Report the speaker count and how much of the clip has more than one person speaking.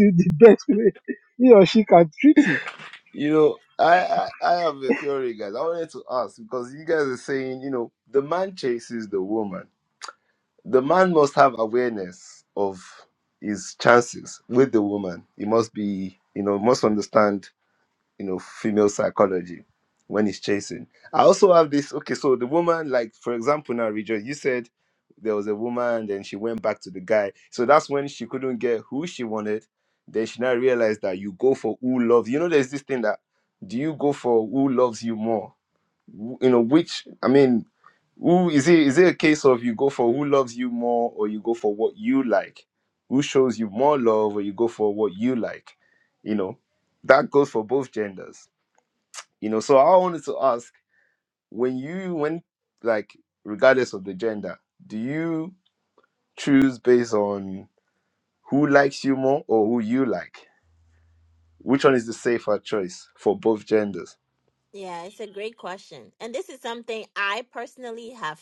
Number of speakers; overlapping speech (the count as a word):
three, no overlap